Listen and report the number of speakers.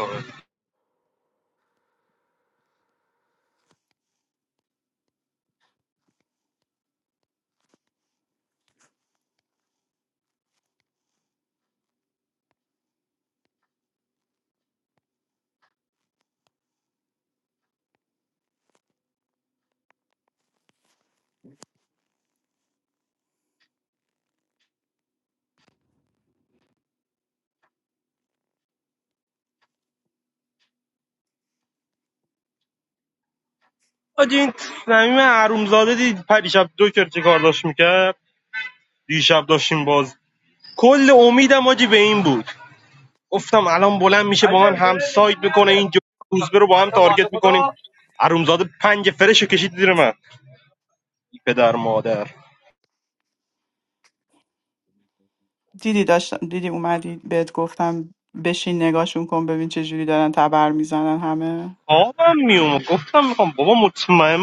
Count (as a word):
two